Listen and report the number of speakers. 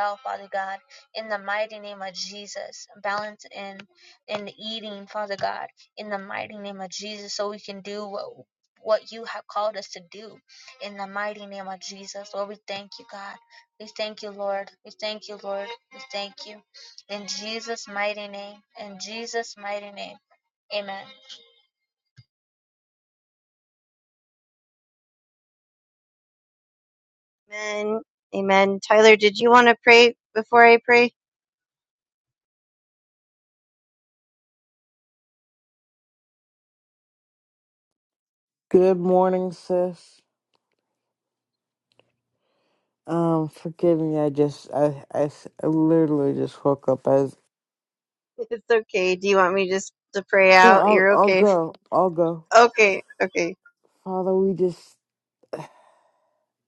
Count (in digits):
3